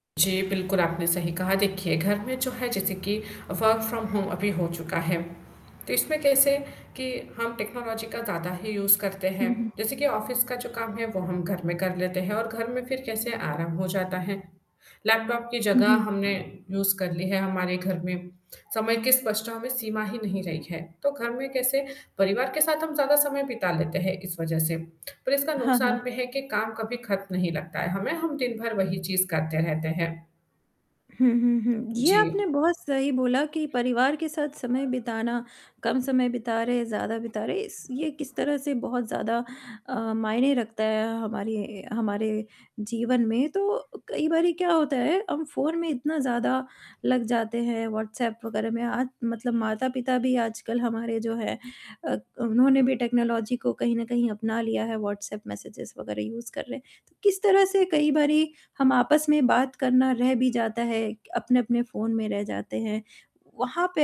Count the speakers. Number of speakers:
2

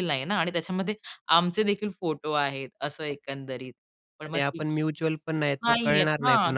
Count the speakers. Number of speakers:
2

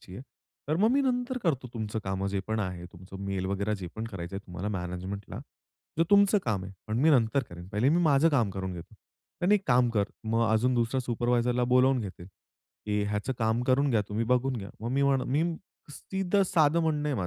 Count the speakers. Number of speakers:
1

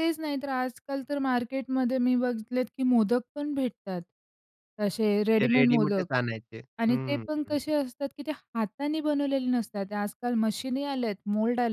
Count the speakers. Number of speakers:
2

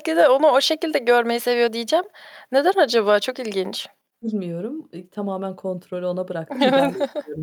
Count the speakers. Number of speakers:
2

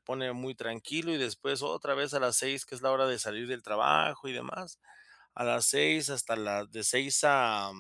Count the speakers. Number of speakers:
1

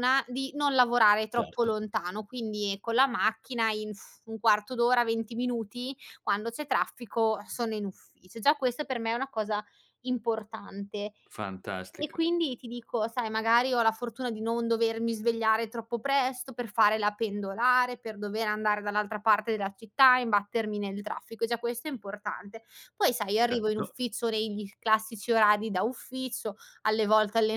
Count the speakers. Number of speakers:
2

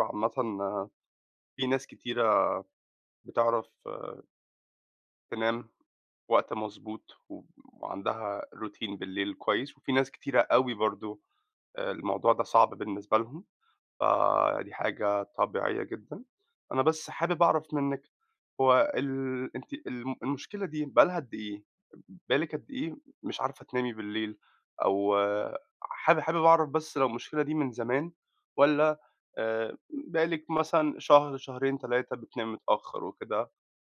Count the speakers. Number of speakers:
1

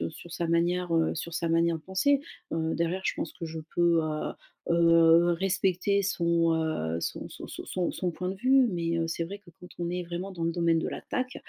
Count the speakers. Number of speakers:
1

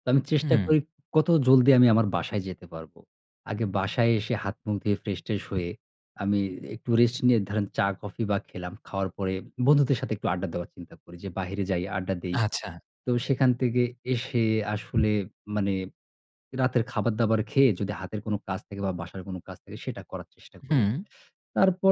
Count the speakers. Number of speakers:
2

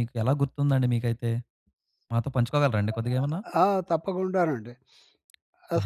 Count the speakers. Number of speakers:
2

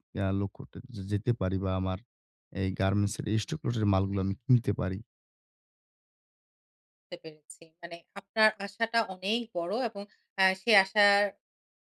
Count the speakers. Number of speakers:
2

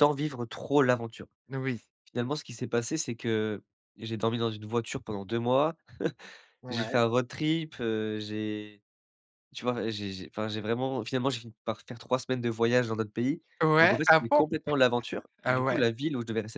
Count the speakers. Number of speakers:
2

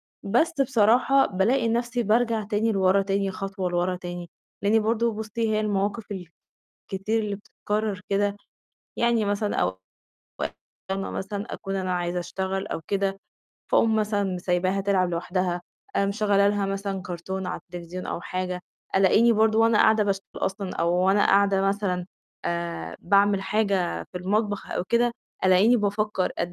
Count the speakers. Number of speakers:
1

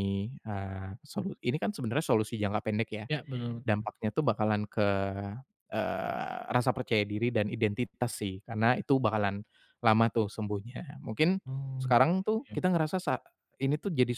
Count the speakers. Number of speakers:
2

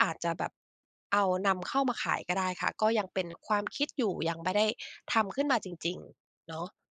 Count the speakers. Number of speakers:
1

